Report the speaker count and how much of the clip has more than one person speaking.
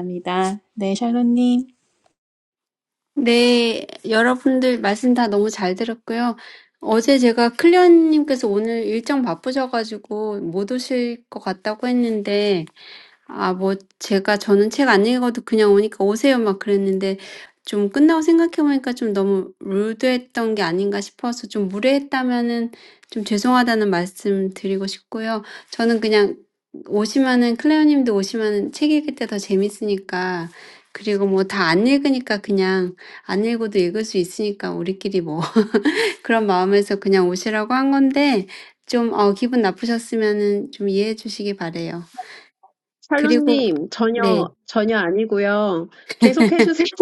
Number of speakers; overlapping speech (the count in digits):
3, about 2%